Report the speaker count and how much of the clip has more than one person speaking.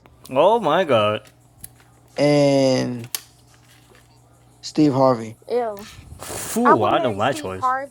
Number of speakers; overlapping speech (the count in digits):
3, about 12%